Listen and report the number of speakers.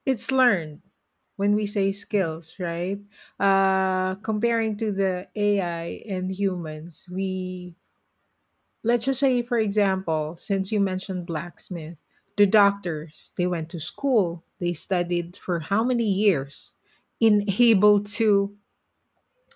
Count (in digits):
1